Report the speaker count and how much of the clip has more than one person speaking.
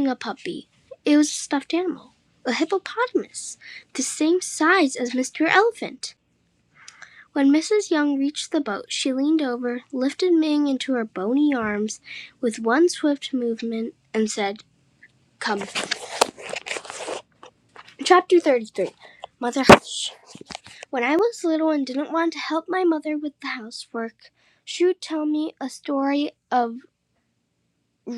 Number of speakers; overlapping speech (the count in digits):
1, no overlap